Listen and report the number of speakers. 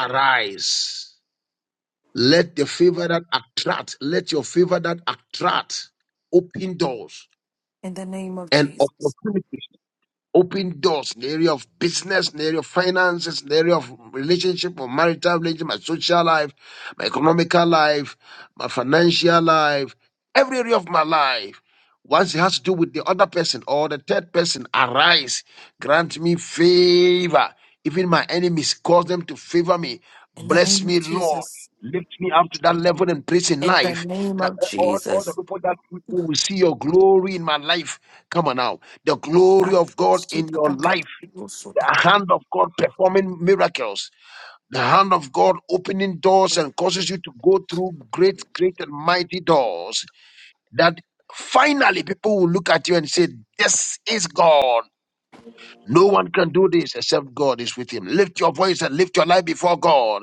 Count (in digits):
2